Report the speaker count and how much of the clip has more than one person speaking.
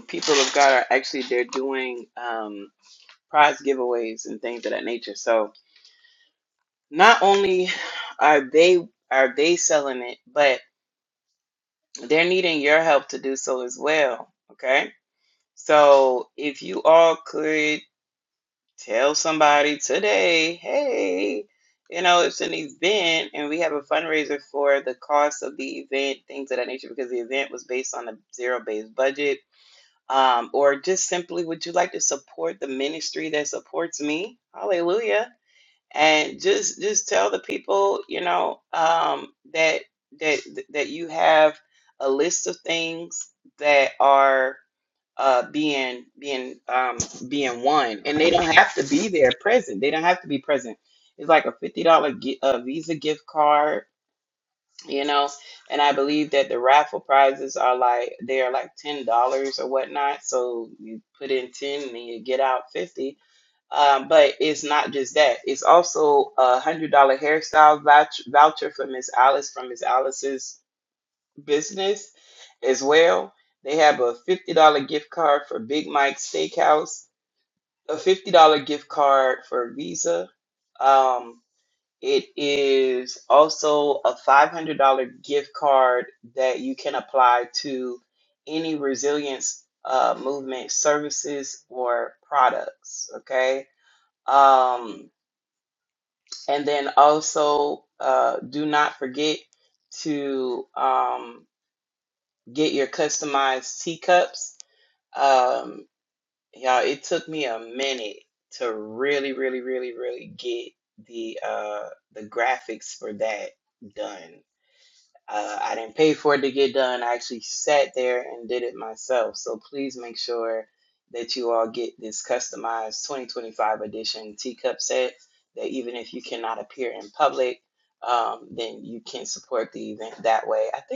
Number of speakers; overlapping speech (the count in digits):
1, no overlap